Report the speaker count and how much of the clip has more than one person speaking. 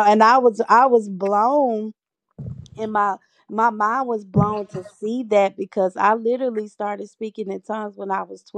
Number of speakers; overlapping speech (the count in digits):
1, no overlap